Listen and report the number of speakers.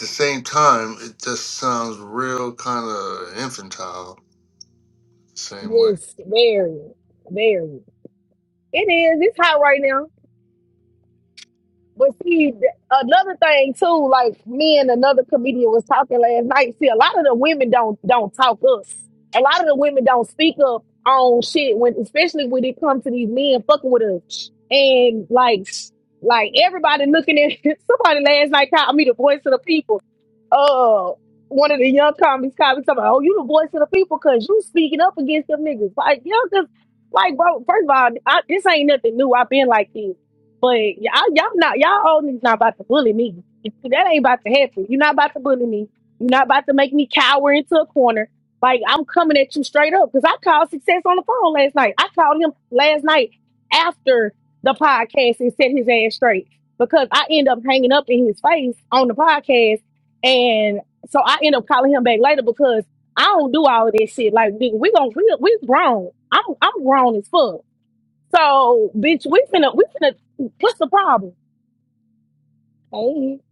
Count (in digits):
2